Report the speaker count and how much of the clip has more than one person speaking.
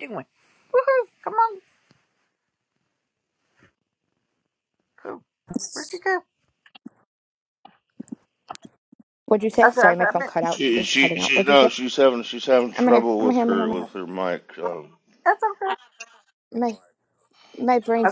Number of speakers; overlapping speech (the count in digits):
3, about 18%